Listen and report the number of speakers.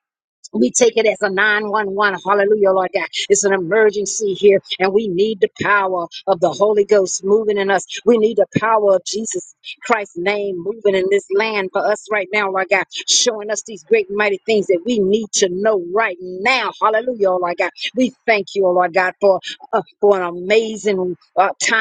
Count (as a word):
one